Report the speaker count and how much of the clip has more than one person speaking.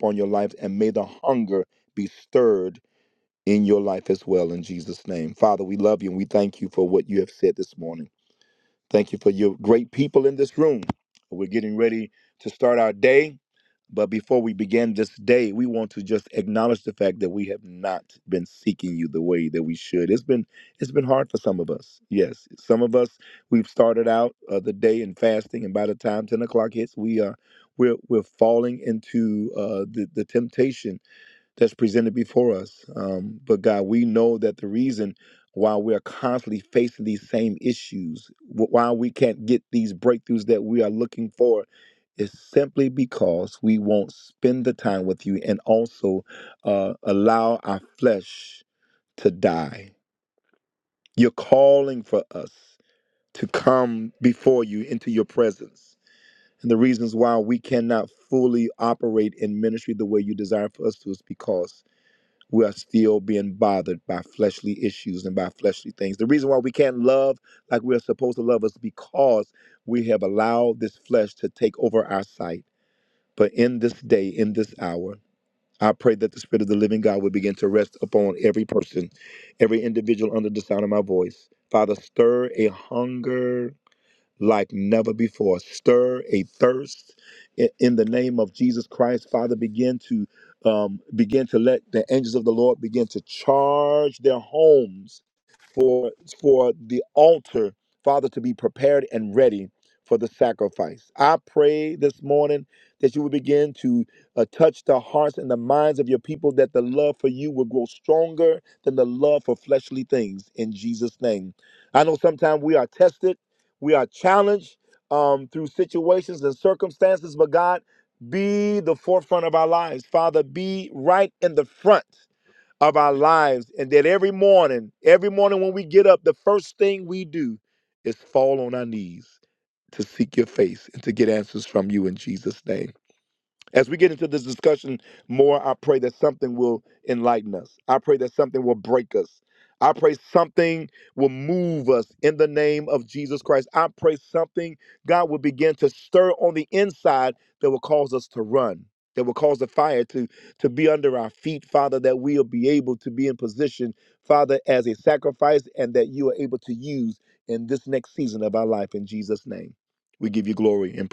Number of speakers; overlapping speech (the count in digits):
1, no overlap